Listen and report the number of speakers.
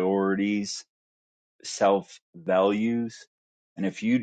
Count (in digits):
1